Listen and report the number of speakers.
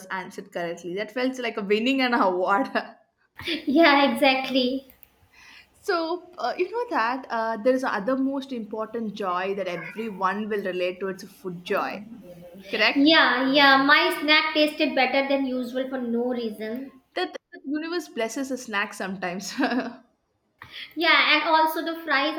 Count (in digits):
2